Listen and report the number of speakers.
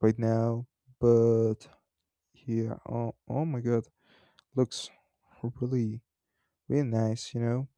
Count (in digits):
1